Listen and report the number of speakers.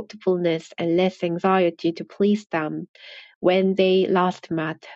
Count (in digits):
1